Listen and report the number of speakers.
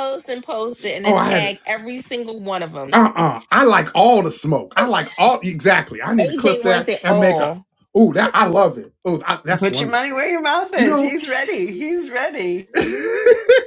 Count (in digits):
3